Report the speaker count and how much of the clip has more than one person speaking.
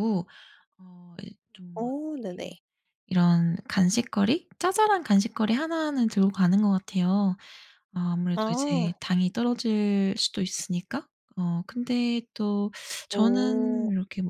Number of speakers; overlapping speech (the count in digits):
2, about 10%